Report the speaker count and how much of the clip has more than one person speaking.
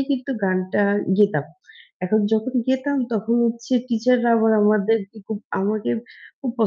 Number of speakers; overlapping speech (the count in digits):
1, no overlap